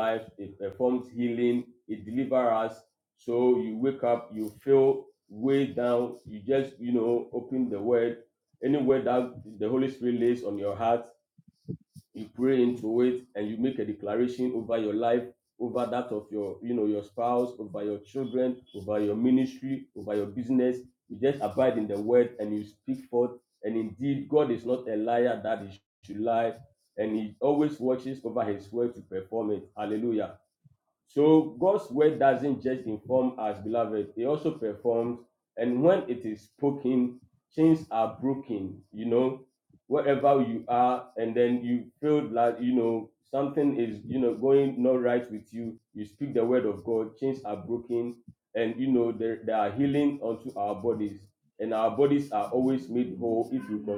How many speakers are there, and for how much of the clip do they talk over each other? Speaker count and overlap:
1, no overlap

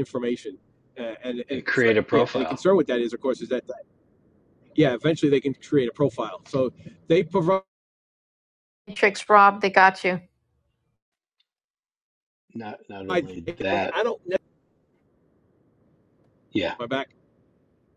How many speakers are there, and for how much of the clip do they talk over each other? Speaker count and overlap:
3, about 5%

